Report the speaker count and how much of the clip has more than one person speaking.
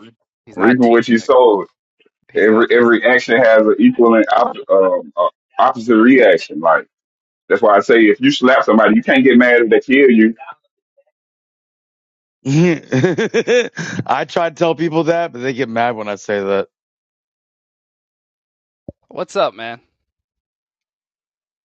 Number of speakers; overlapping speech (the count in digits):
3, about 6%